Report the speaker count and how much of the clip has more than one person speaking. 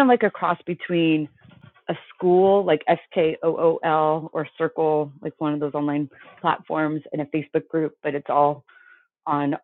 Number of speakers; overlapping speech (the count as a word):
one, no overlap